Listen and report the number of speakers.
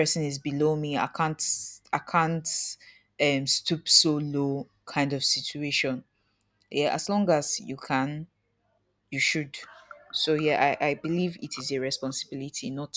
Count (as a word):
one